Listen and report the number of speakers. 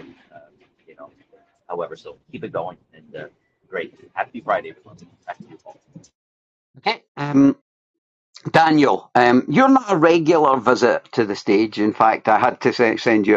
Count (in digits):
2